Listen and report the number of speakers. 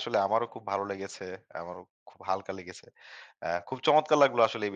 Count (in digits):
1